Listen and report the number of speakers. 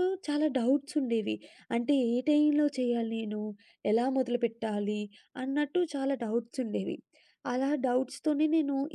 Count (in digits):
1